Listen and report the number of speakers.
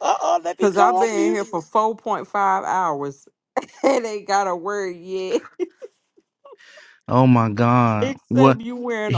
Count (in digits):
3